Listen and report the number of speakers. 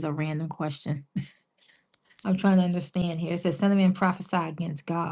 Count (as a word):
one